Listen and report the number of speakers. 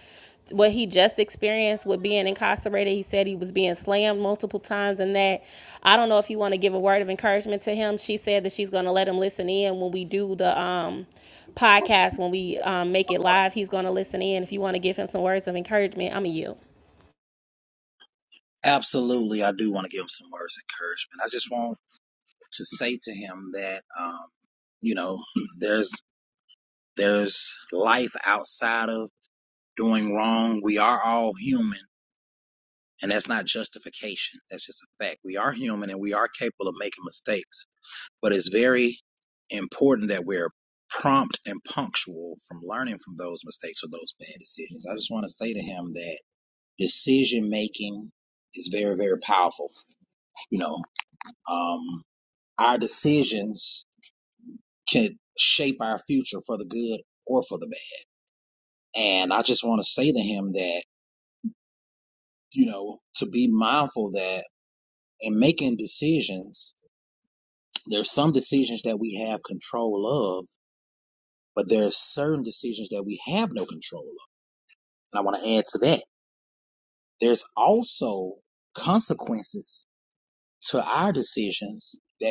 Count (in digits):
2